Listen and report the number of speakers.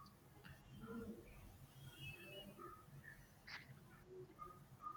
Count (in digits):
0